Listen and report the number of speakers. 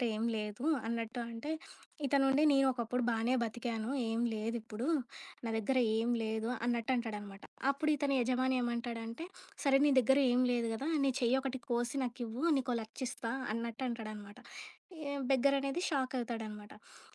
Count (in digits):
1